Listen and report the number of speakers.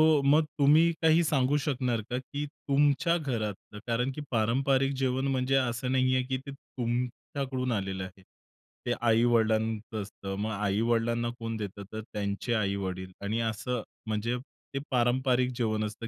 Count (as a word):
one